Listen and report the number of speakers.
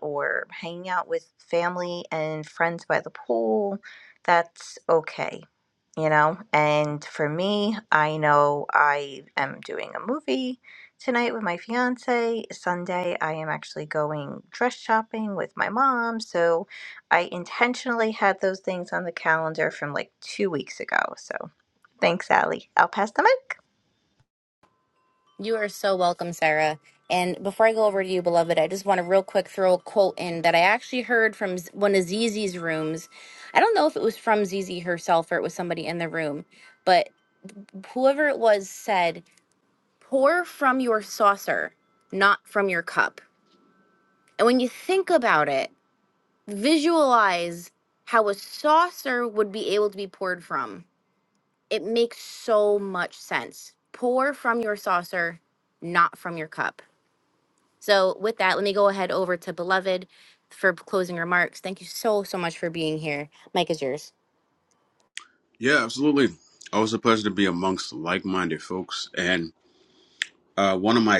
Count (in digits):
3